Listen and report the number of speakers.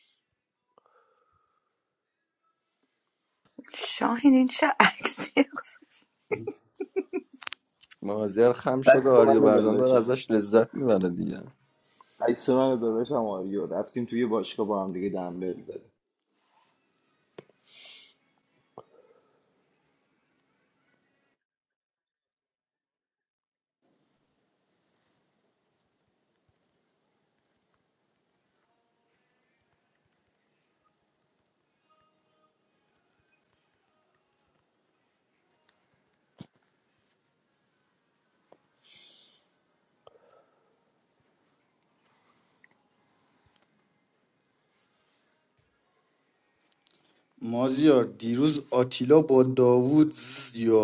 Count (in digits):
4